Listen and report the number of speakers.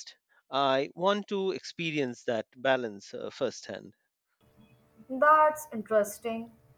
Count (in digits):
2